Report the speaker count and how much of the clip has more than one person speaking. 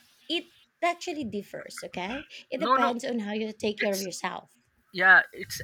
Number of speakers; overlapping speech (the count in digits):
2, about 11%